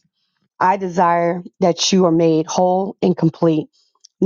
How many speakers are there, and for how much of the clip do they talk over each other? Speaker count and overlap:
1, no overlap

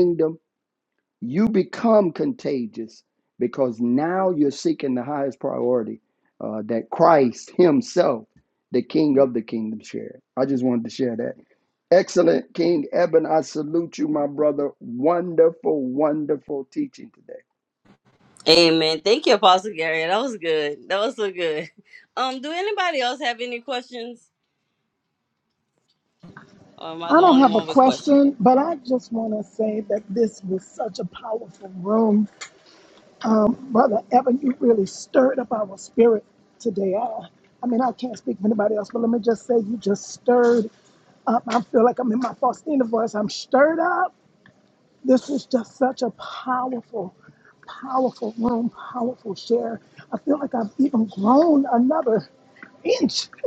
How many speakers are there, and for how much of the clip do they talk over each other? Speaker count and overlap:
3, about 2%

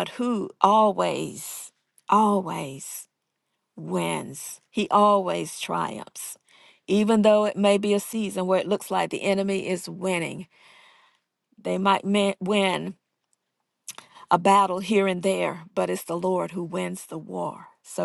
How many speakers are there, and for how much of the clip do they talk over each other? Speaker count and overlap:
1, no overlap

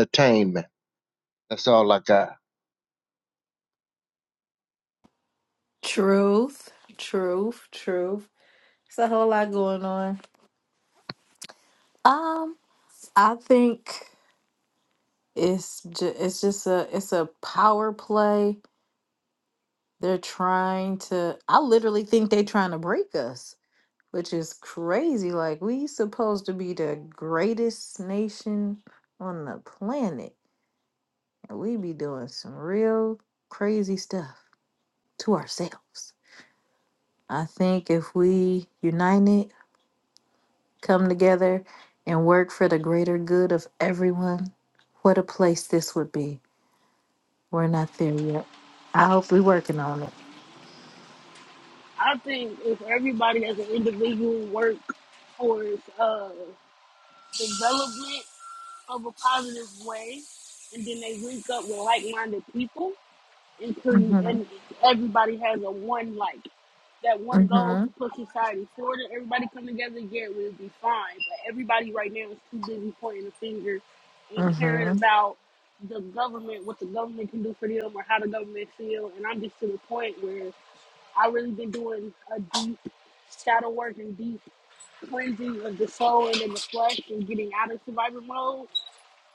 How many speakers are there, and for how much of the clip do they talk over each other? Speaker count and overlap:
3, about 2%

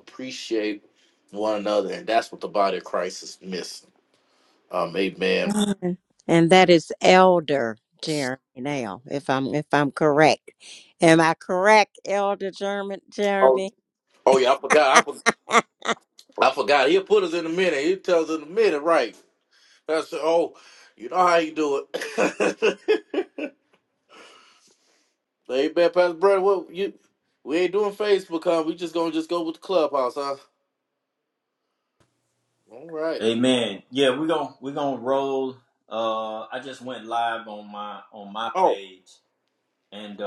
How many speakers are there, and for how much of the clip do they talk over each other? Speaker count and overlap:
3, about 2%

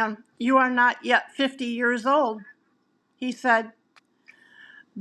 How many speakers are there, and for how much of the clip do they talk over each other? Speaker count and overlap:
1, no overlap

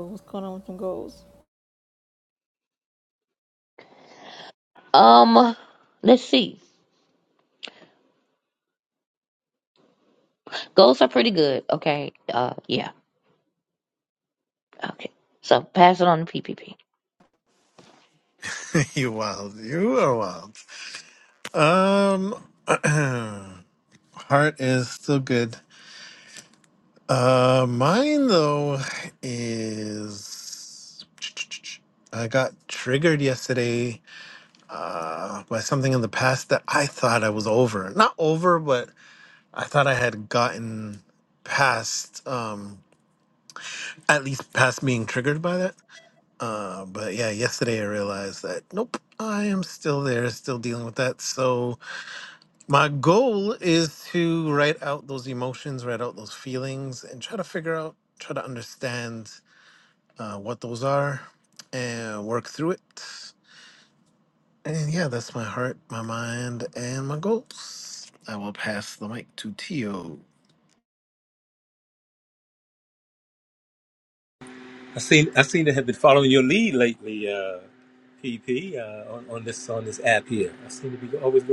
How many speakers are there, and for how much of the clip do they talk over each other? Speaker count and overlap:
4, no overlap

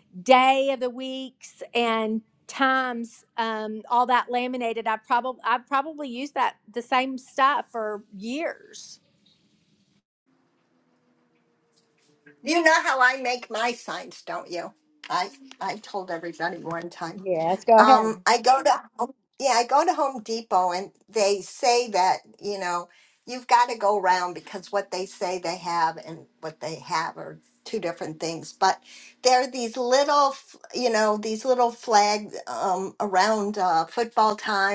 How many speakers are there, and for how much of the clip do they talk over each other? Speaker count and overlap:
2, about 1%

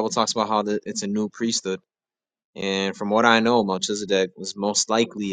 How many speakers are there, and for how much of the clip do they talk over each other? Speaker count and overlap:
1, no overlap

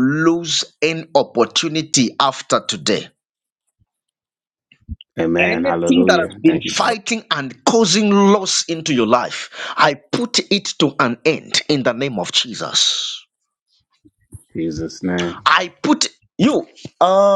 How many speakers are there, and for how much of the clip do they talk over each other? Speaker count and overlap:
2, about 9%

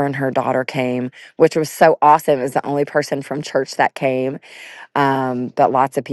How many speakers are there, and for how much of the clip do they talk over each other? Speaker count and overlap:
1, no overlap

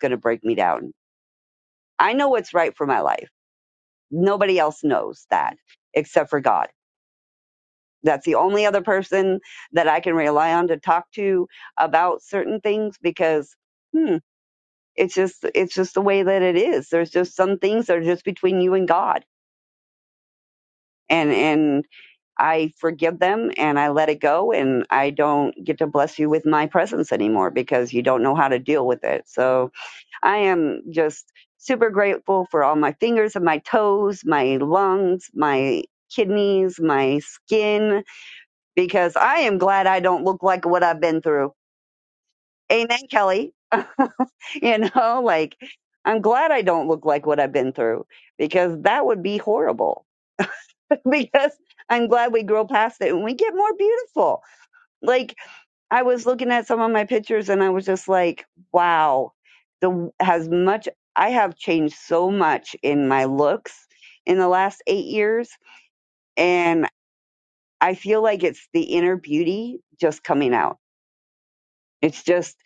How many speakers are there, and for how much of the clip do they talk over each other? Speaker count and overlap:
1, no overlap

